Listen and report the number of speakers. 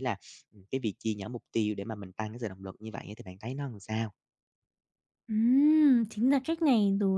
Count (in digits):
2